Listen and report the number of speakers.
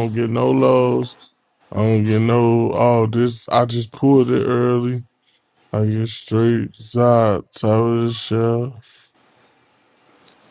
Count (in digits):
1